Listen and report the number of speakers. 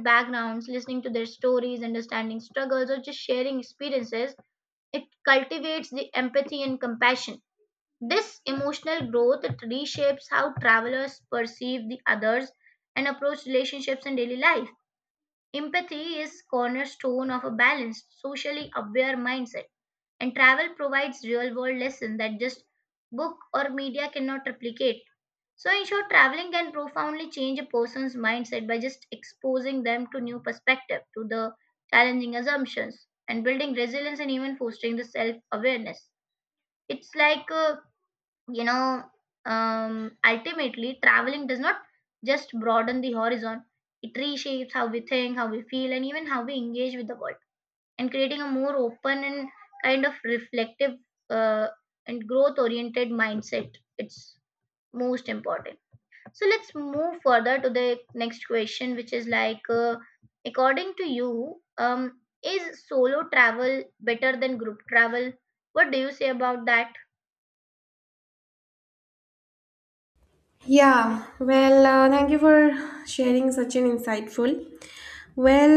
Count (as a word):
two